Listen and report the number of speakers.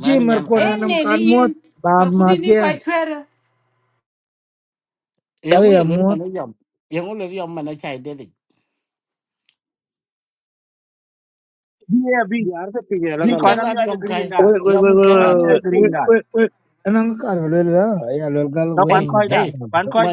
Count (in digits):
5